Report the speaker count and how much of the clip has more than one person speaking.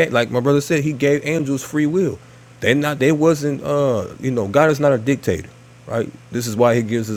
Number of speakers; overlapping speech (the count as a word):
one, no overlap